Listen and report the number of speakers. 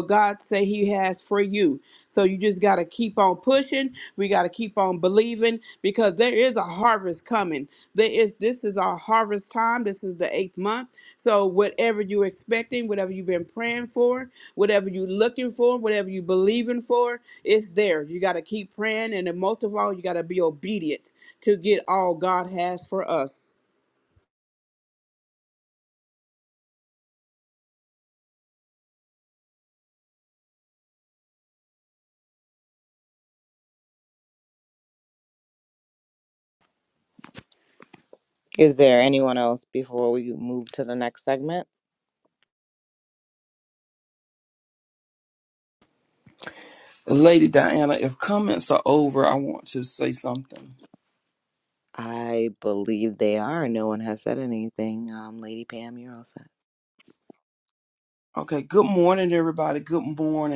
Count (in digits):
3